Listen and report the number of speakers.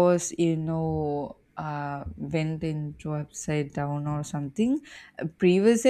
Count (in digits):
1